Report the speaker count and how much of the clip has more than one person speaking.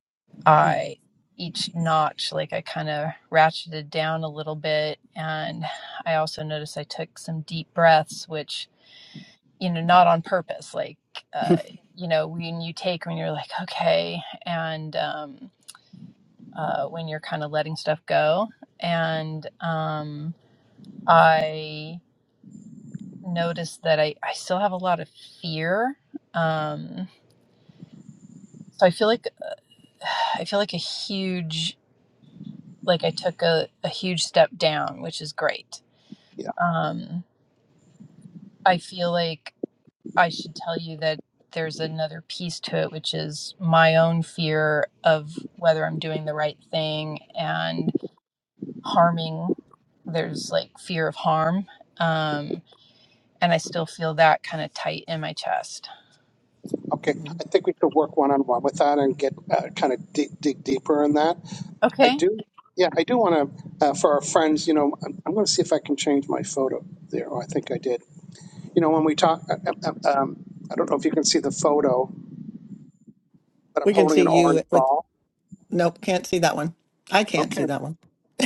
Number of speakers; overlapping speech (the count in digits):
3, about 2%